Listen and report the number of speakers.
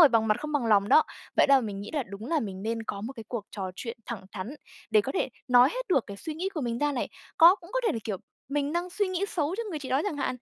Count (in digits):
1